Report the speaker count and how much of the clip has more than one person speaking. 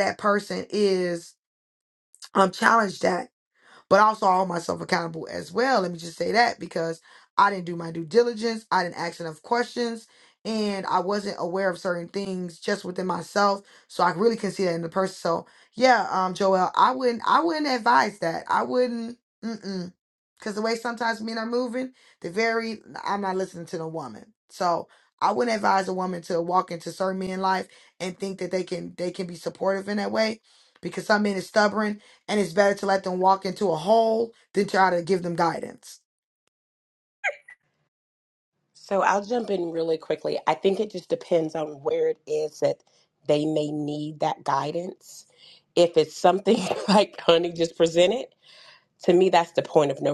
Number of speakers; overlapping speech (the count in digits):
2, no overlap